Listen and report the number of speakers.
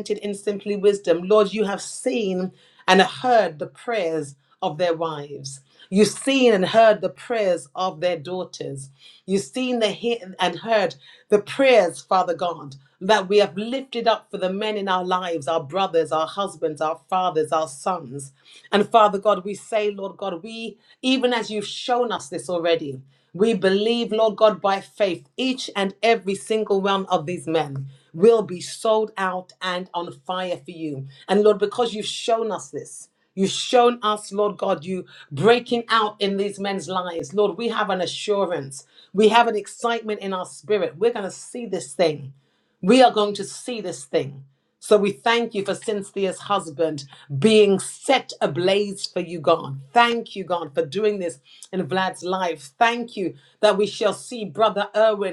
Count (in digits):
1